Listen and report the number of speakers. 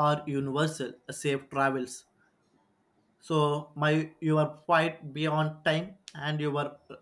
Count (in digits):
1